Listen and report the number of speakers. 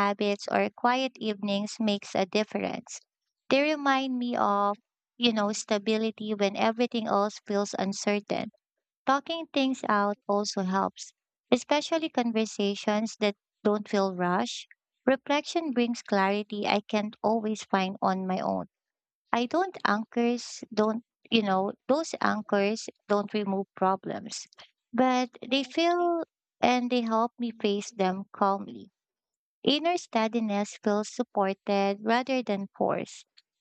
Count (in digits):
1